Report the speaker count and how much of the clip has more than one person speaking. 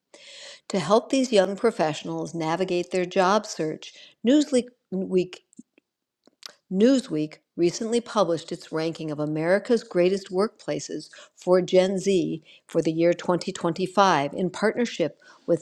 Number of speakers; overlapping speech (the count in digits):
1, no overlap